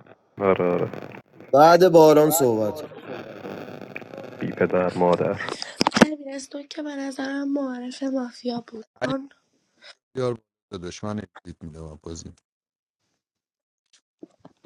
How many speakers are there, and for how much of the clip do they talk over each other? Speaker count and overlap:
4, about 1%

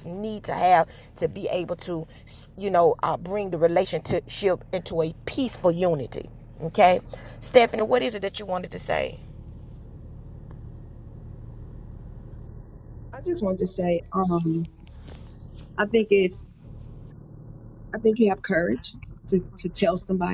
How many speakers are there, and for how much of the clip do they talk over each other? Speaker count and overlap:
2, no overlap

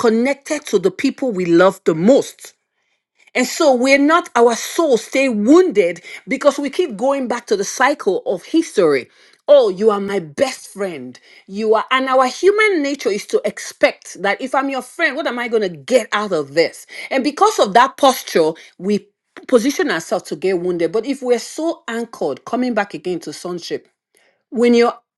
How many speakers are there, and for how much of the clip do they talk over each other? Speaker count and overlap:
1, no overlap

